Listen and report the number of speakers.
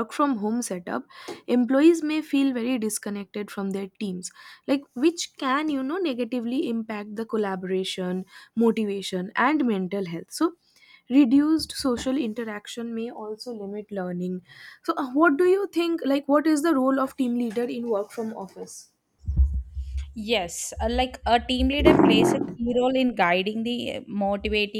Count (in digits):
2